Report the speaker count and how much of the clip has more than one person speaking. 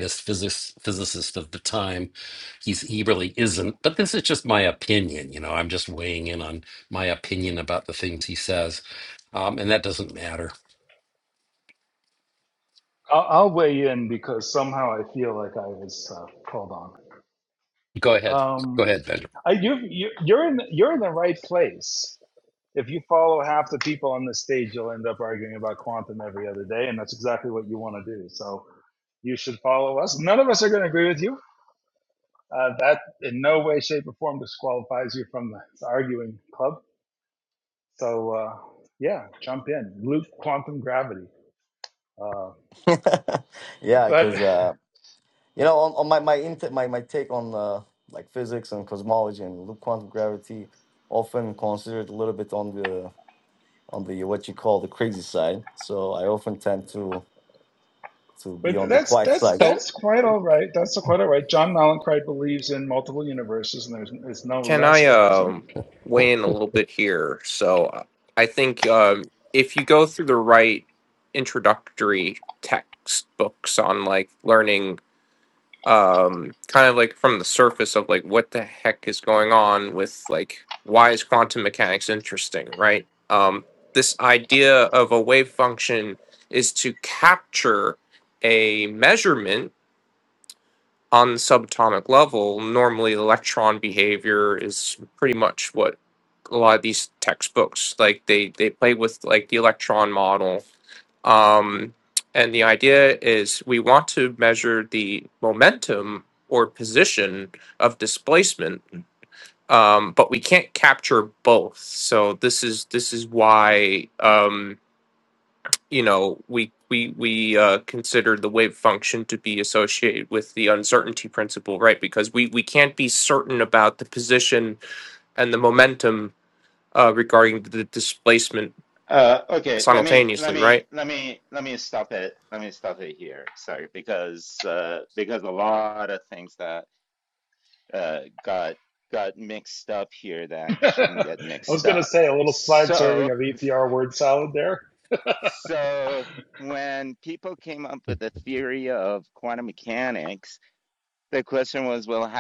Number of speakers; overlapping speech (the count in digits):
5, about 4%